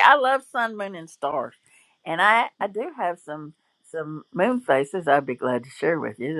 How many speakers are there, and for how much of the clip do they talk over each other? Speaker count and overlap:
one, no overlap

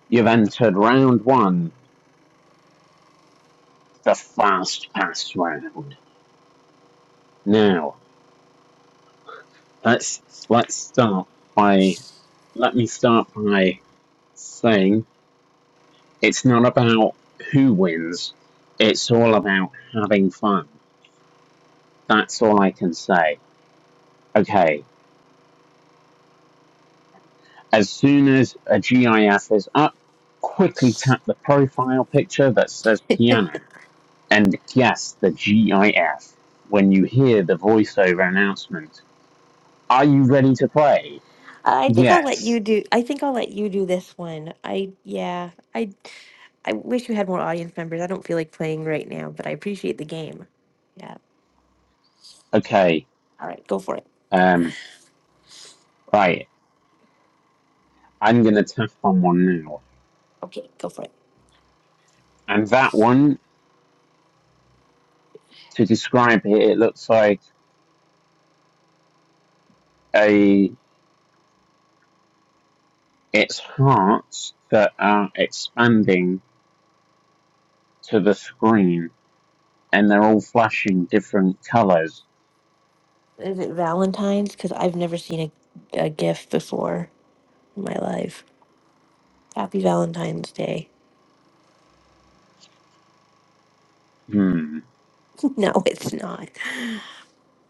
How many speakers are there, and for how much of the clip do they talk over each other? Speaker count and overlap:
two, under 1%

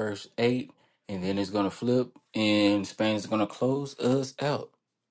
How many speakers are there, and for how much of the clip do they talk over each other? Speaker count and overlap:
one, no overlap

